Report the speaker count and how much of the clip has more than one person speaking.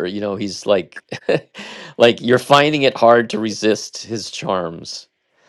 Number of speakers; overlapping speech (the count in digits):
1, no overlap